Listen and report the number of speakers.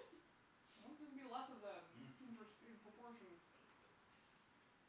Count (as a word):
one